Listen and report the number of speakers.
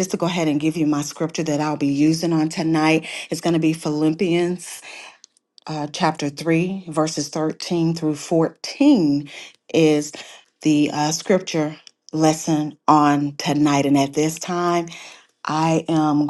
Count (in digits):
1